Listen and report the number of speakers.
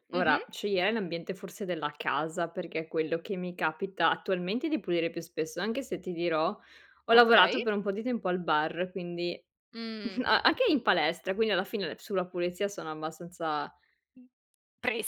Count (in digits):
2